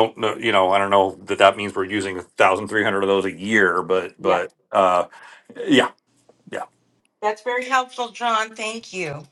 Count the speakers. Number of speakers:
2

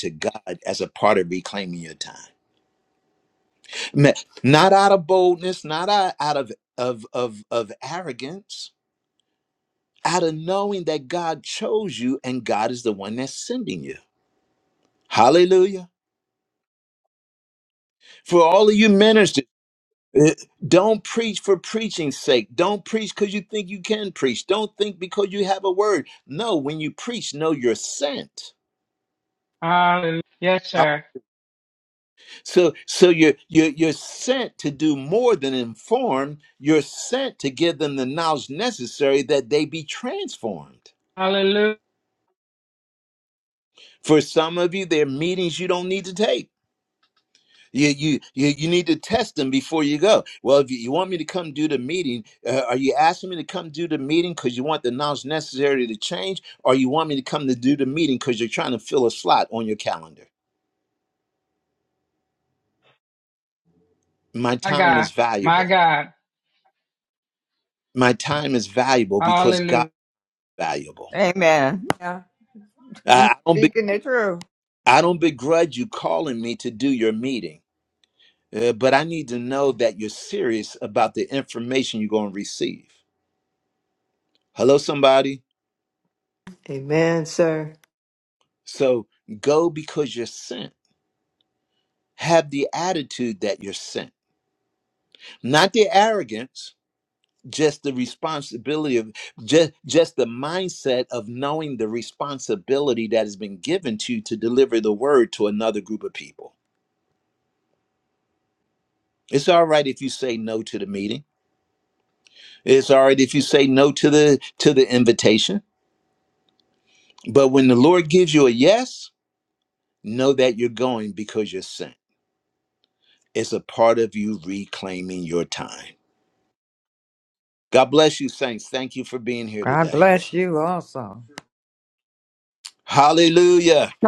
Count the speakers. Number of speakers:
4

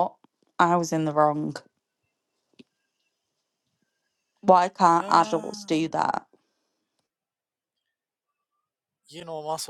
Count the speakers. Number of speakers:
2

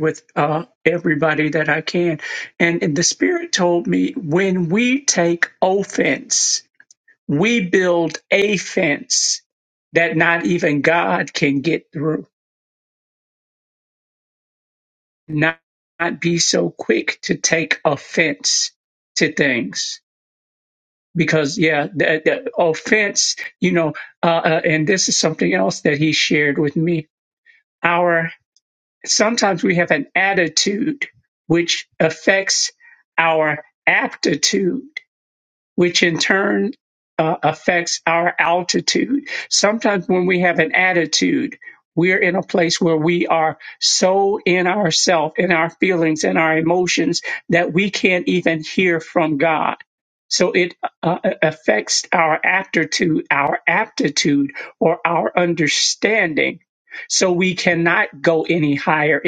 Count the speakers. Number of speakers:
1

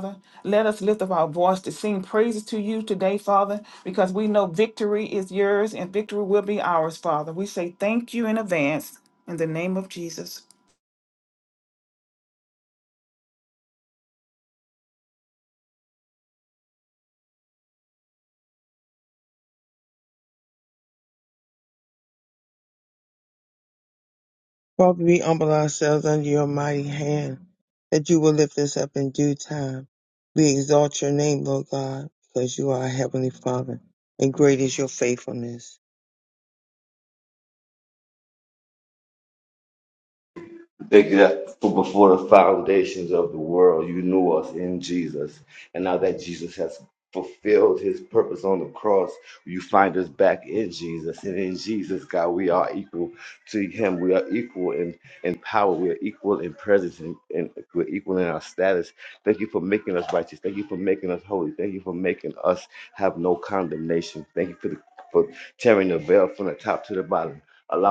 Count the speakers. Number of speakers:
3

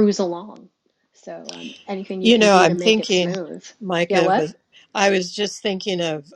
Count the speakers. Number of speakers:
2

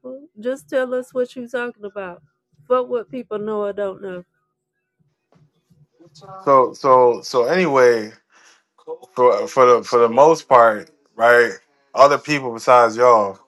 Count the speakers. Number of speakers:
2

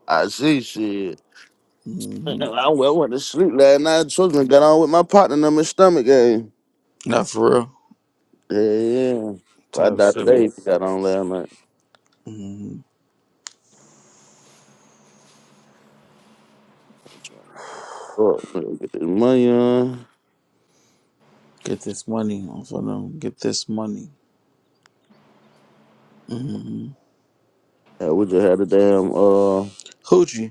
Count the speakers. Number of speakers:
2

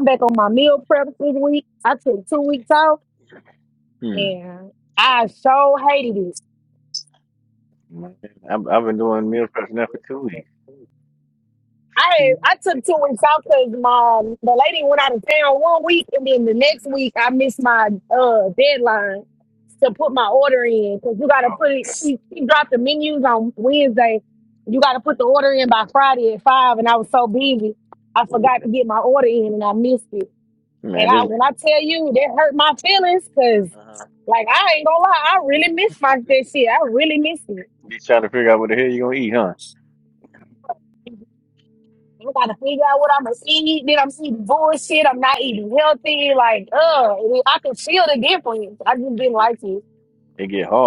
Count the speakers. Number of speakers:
2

